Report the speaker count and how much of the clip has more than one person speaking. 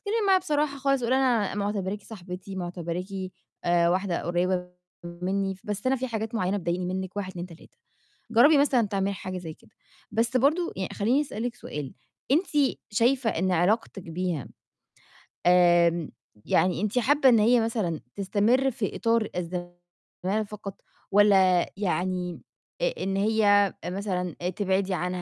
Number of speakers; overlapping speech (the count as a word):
one, no overlap